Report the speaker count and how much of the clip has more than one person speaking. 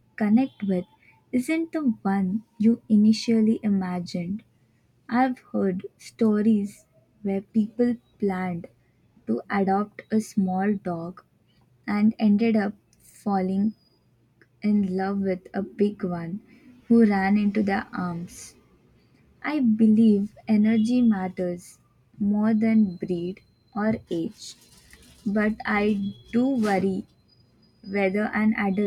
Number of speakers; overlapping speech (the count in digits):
1, no overlap